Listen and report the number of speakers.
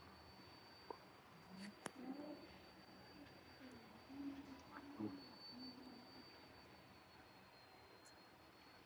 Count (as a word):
zero